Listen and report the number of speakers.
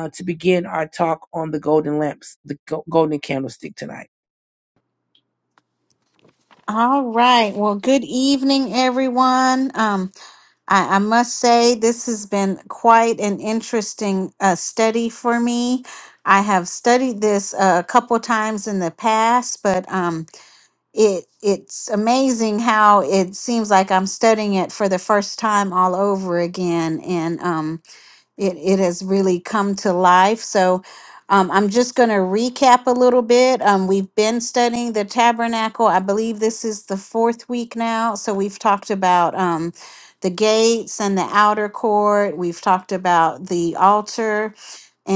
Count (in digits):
2